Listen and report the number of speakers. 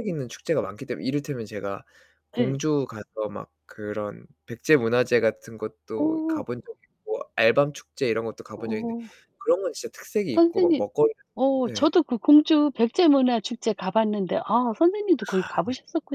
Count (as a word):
two